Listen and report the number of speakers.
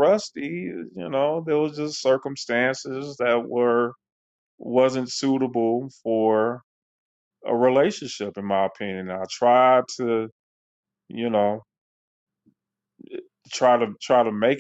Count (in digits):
1